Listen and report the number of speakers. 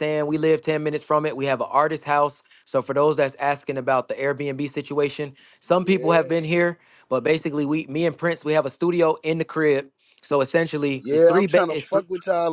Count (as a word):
two